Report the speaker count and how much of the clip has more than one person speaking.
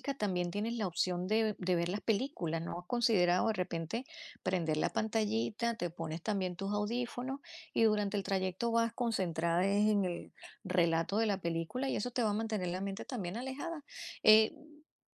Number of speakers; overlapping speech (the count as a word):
one, no overlap